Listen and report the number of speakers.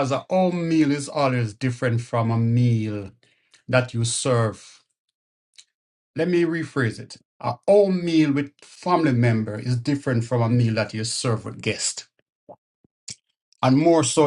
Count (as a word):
one